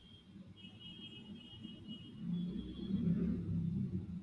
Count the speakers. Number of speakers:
0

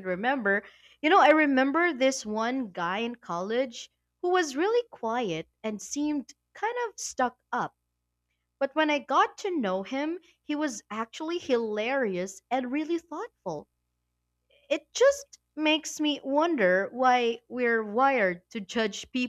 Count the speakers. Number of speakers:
1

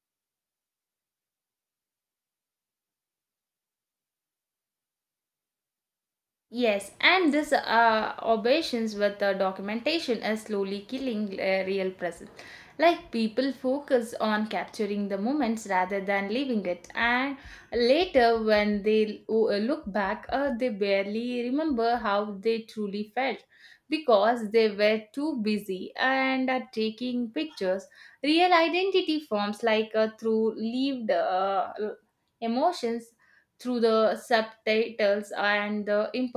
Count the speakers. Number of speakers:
1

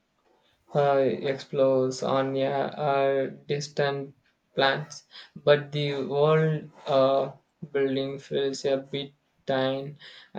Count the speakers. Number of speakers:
1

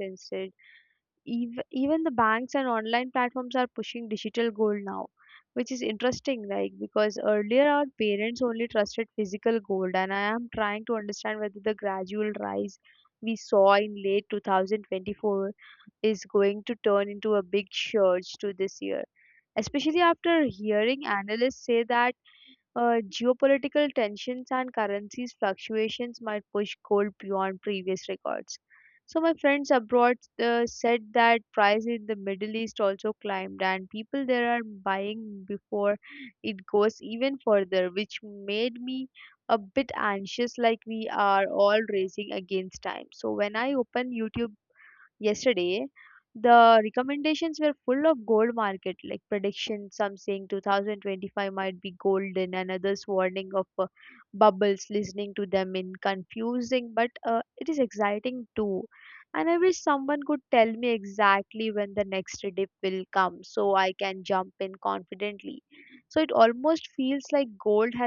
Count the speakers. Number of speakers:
1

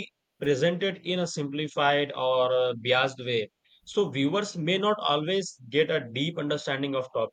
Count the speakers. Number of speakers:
1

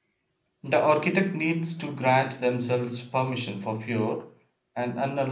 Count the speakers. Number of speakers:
1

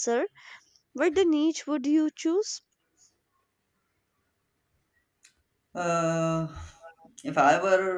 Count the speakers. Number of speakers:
2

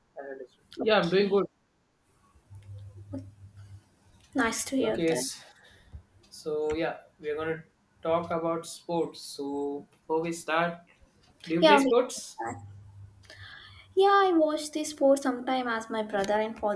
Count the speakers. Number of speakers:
2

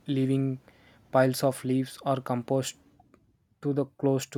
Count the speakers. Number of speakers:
1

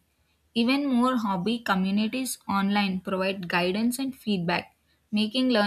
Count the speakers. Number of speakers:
1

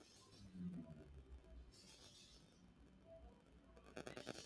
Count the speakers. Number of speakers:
0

